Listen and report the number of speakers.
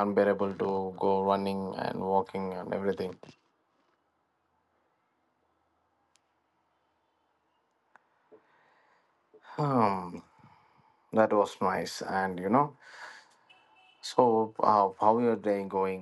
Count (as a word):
one